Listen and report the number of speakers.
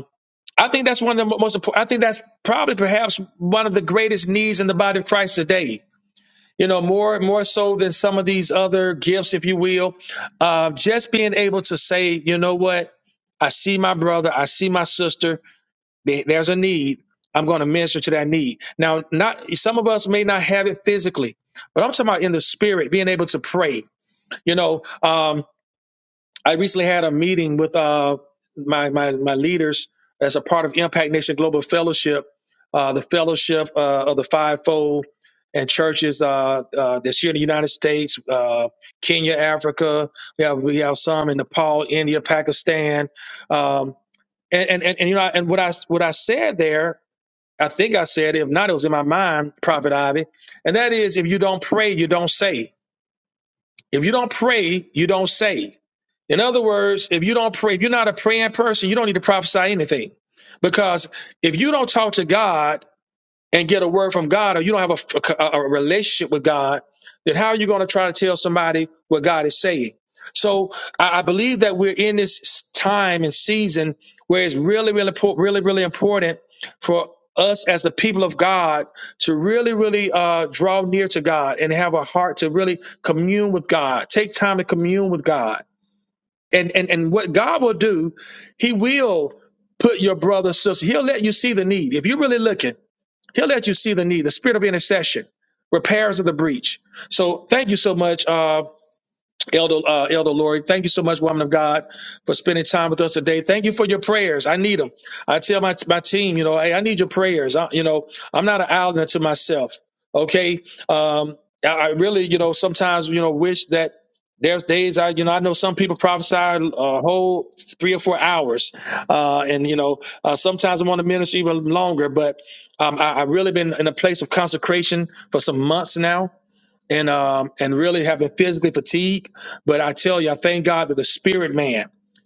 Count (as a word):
one